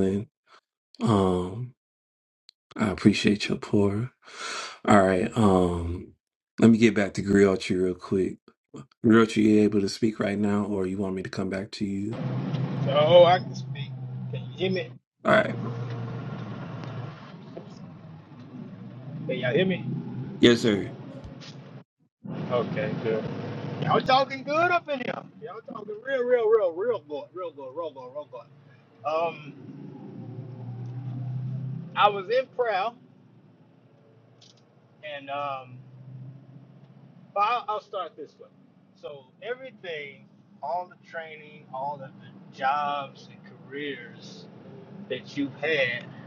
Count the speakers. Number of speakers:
two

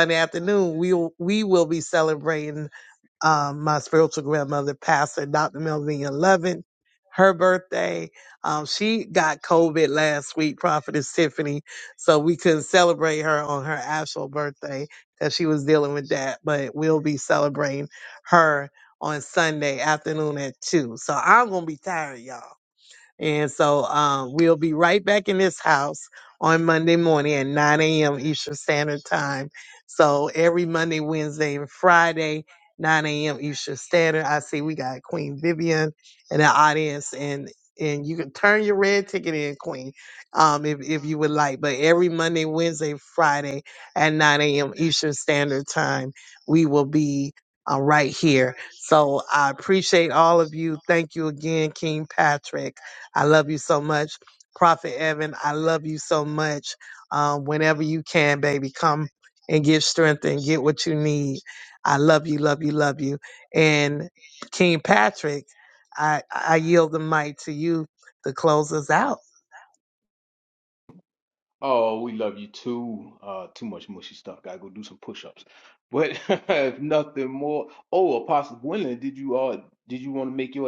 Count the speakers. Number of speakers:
two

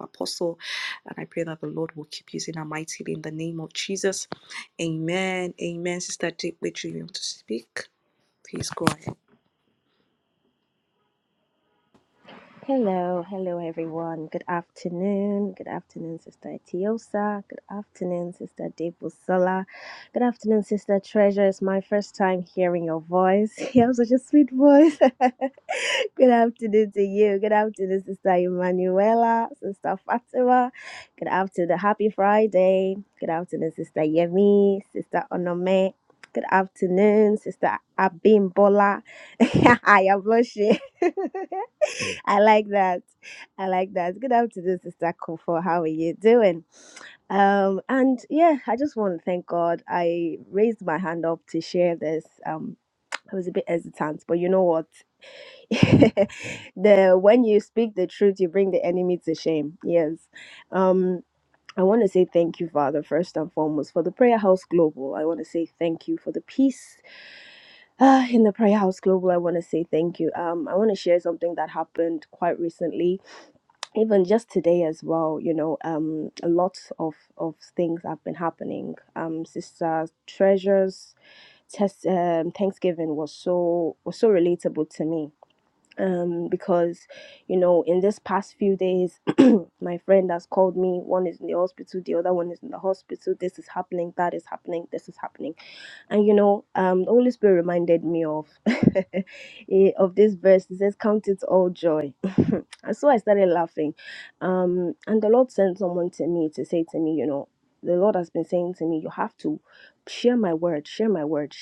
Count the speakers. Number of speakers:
two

